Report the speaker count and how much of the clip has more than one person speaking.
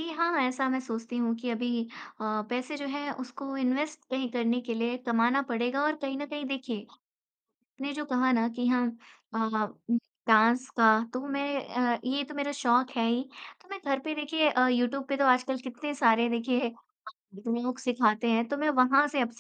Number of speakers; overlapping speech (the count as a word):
one, no overlap